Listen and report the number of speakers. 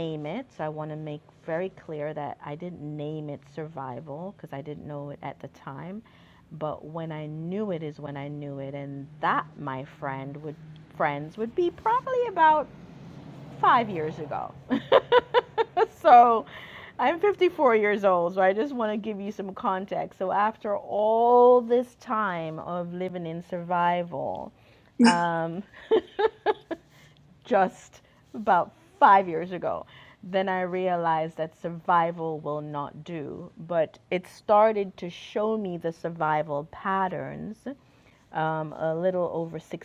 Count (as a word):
one